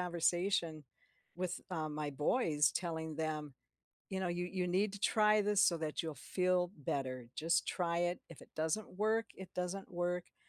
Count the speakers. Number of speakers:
1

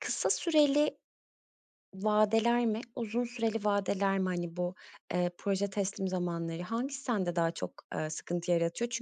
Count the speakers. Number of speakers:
1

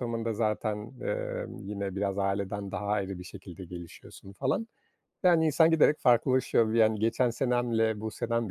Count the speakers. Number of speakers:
1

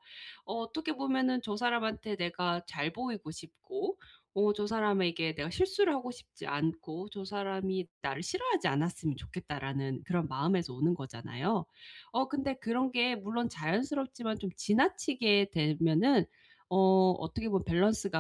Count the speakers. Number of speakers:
1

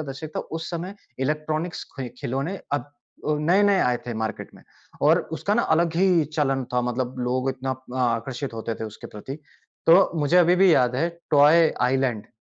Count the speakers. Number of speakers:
1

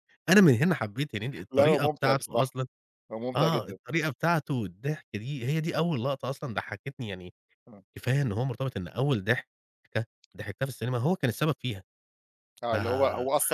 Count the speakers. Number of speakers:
2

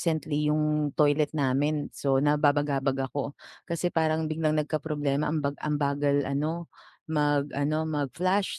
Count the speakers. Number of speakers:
1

